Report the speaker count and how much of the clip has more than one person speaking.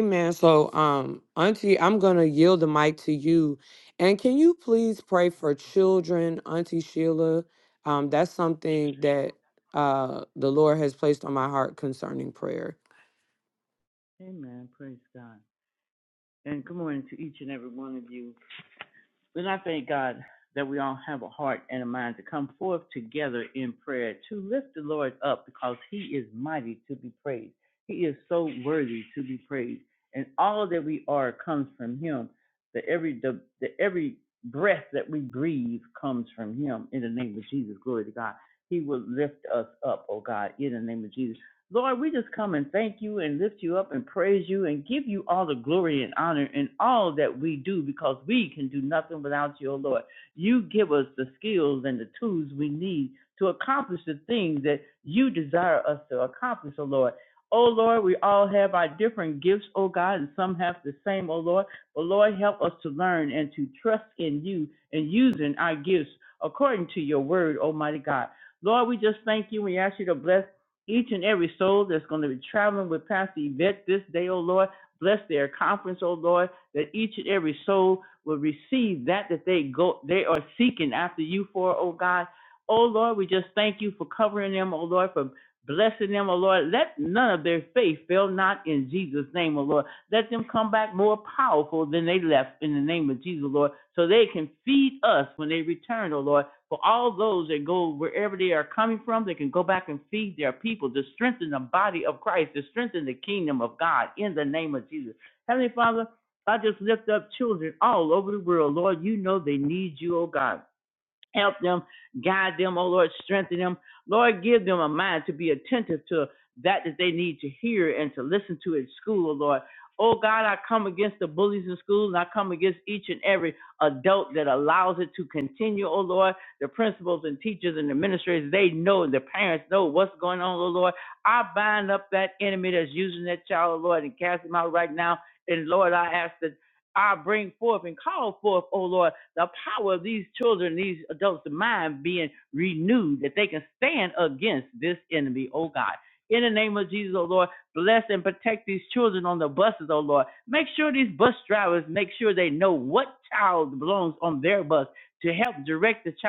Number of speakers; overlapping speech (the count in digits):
2, no overlap